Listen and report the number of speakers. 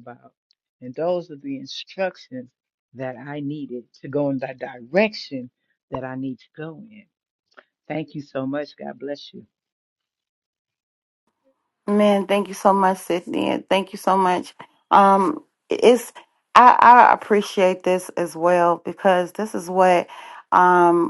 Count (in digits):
2